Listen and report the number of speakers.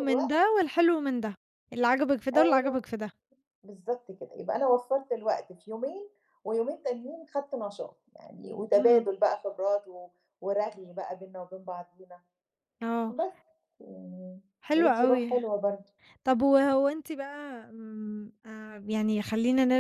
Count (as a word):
two